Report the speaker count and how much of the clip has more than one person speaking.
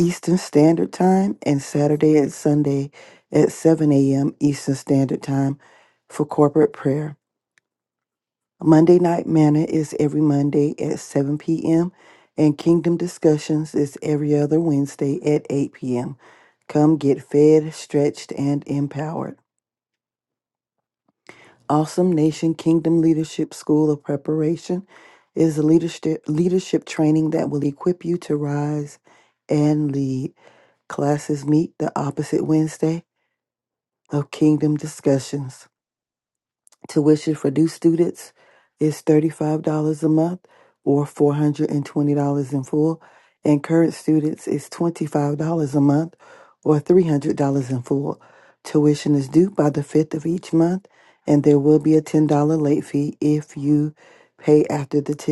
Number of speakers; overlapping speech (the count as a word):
one, no overlap